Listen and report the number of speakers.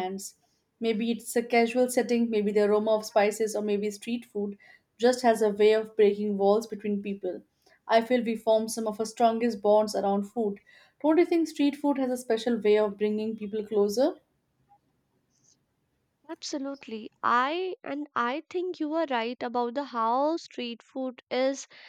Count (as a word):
two